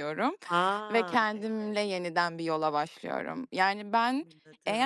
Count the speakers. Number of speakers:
2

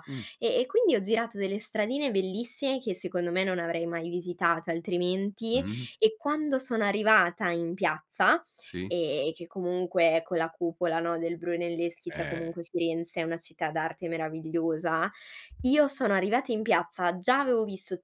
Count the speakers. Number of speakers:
2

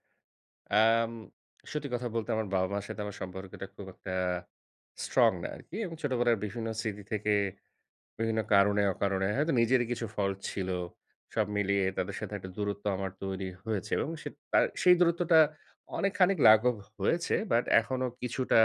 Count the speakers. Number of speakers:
1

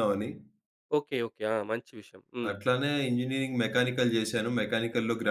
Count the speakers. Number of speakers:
2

